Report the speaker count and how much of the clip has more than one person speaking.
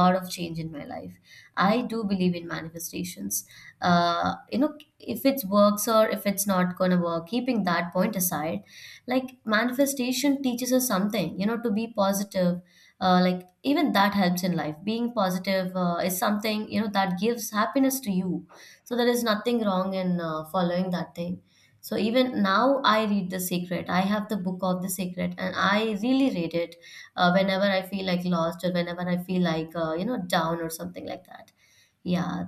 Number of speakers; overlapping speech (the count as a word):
one, no overlap